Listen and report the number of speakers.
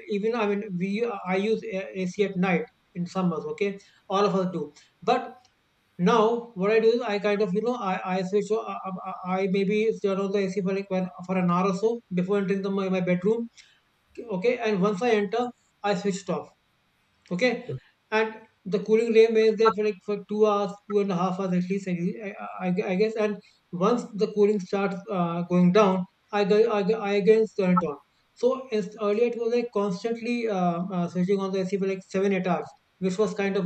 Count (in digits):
1